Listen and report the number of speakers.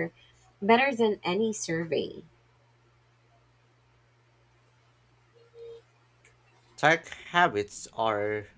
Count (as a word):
two